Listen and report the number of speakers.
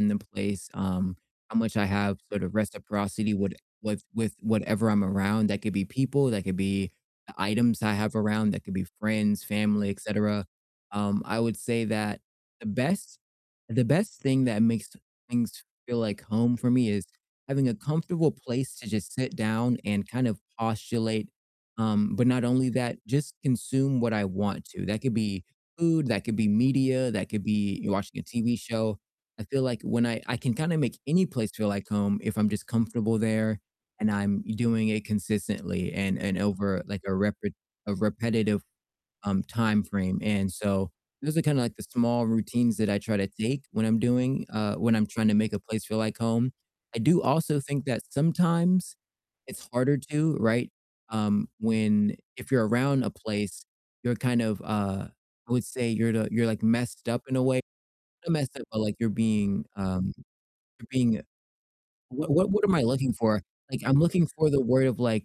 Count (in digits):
1